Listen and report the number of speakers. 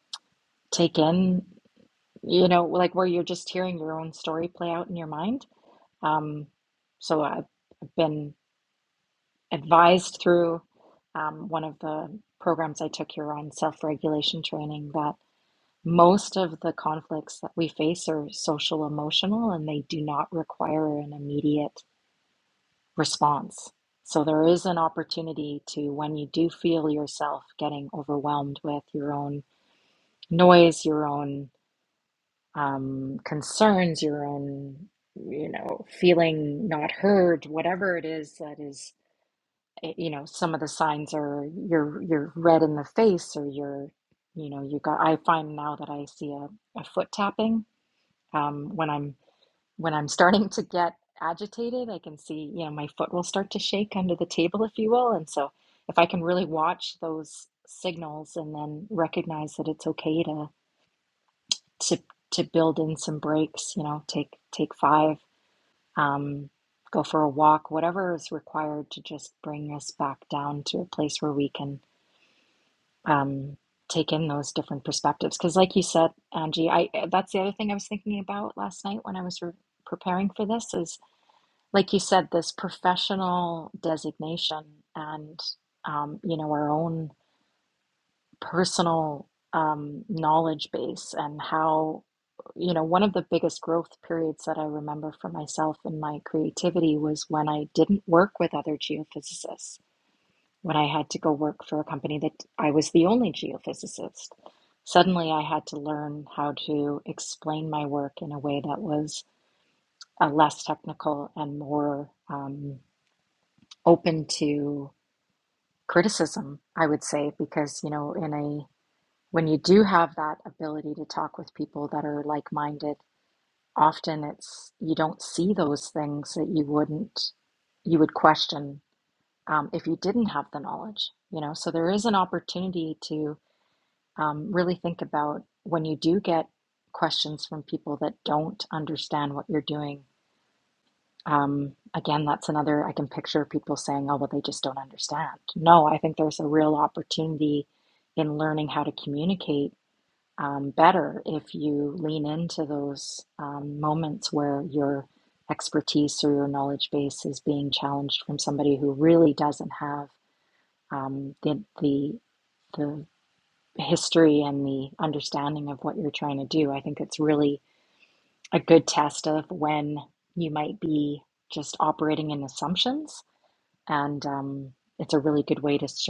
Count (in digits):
1